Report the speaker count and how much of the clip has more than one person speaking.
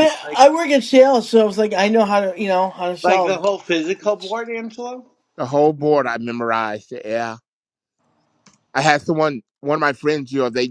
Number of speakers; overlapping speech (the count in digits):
3, about 8%